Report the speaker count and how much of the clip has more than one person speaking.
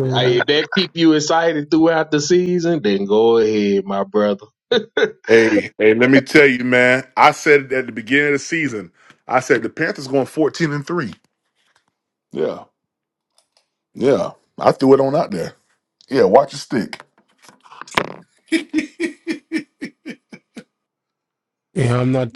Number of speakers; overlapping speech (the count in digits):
3, about 1%